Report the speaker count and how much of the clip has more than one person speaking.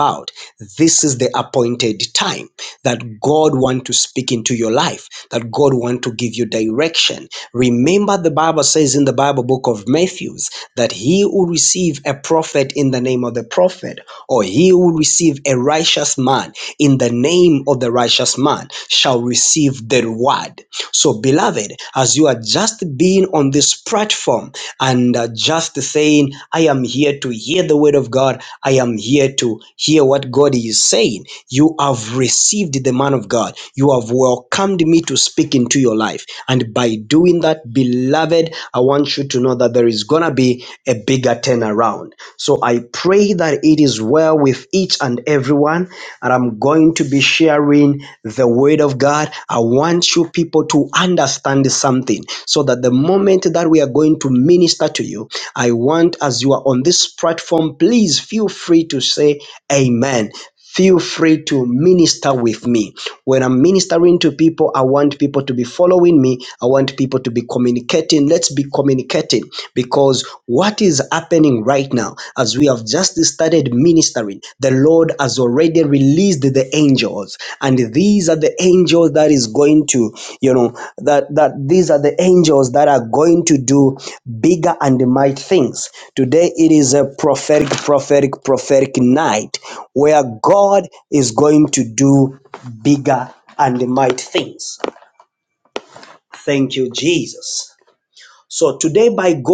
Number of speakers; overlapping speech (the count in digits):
1, no overlap